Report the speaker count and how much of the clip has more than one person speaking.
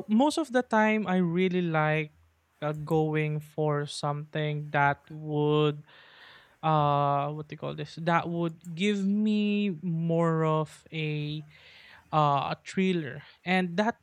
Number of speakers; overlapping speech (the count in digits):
1, no overlap